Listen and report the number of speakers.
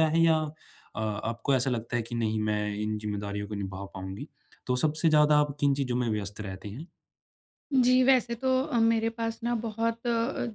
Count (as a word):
two